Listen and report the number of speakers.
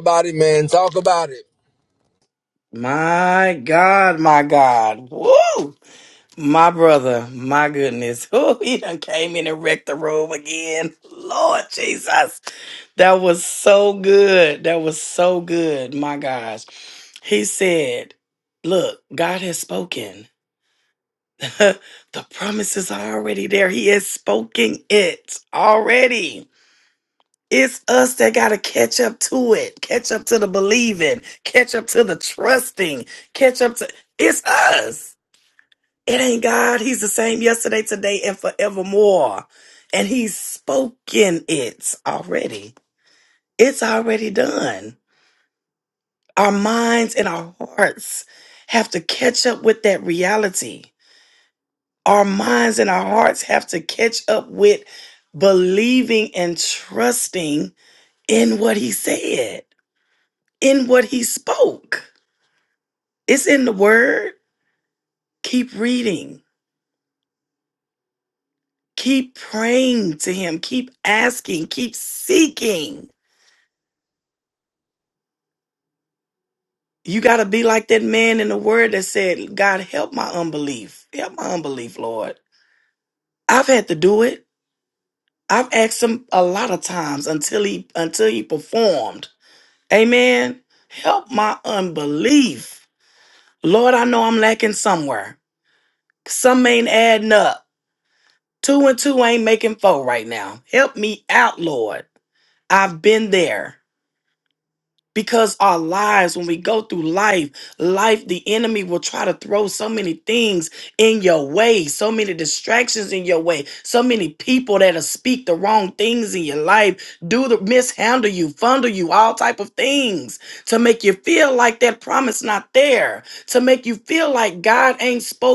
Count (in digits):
2